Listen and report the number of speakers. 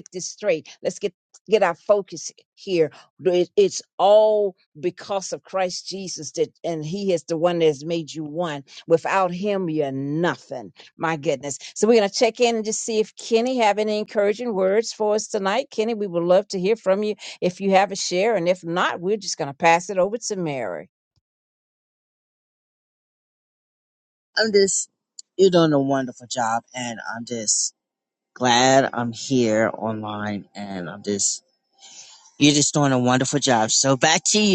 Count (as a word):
two